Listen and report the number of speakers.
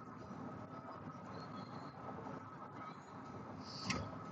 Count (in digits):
0